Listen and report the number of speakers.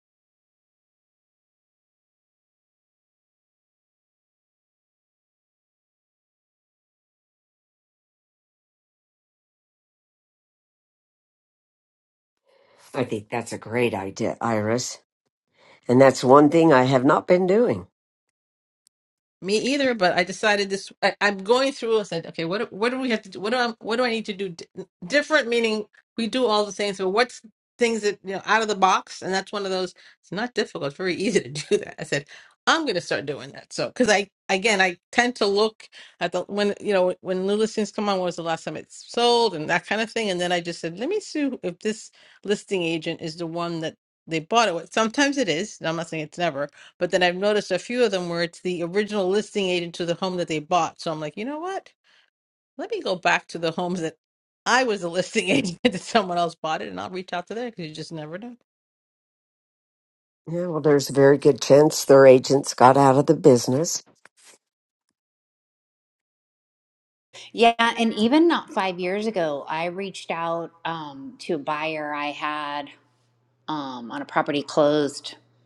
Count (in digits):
3